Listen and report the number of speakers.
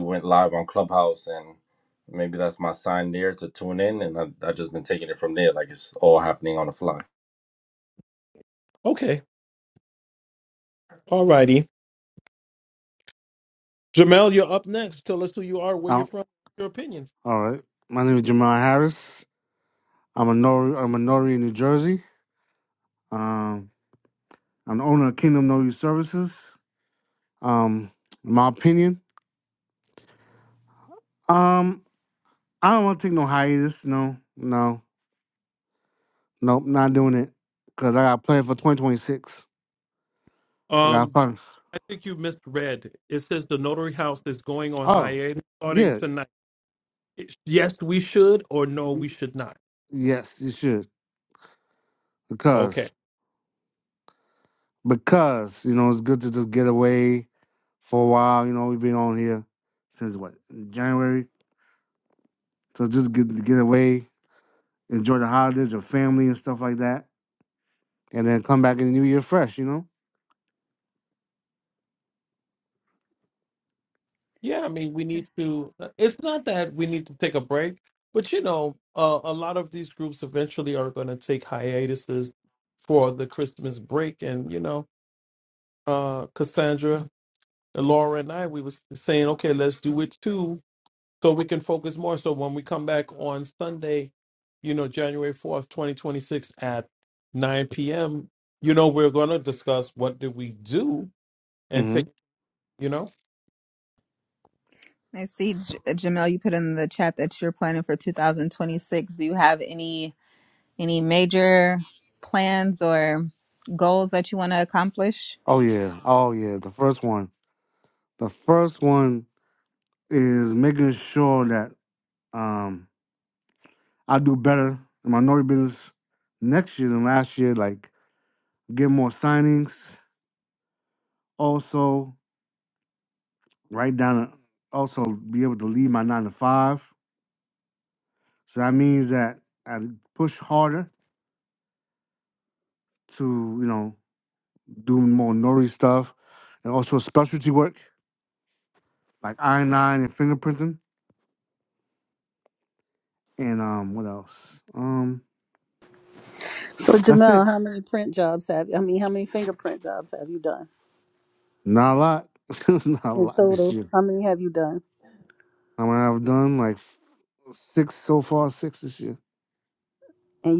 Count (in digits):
5